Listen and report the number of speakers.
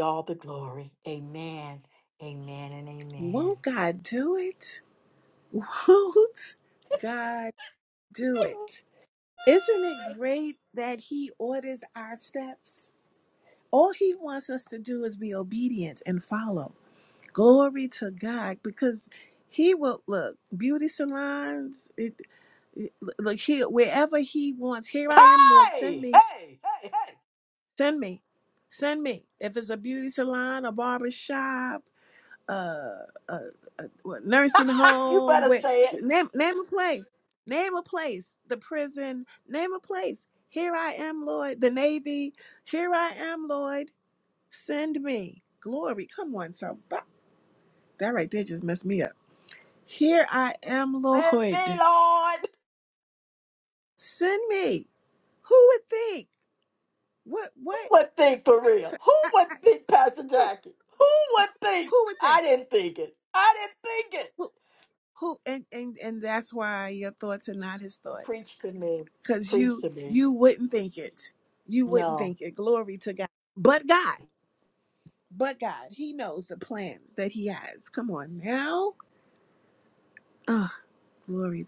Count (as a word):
two